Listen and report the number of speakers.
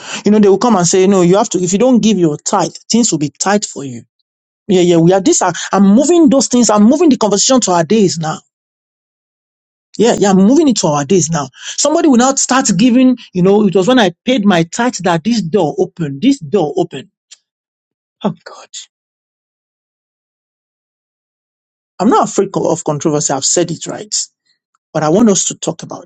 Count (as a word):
one